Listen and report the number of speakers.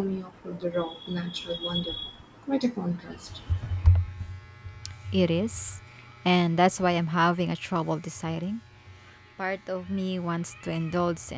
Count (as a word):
two